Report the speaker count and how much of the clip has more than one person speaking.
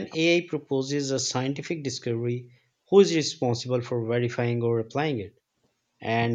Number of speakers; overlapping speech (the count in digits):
1, no overlap